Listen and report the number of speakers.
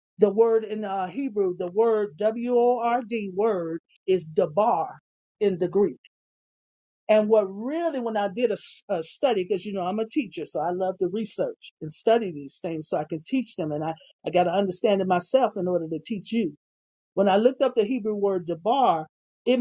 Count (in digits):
1